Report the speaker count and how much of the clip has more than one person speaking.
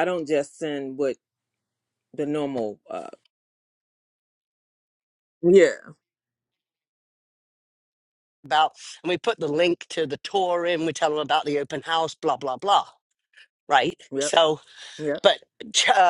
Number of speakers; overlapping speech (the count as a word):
two, about 1%